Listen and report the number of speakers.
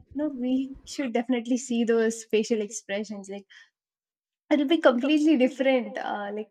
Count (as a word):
one